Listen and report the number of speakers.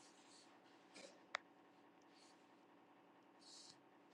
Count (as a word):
zero